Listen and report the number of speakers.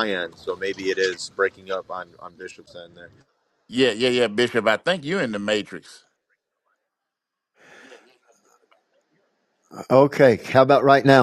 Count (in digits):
3